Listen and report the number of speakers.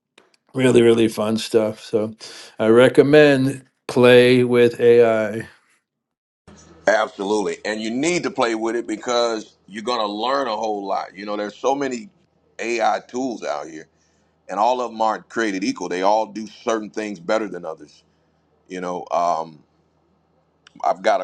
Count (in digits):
2